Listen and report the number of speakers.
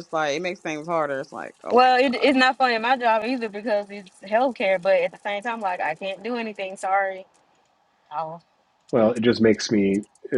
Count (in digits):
3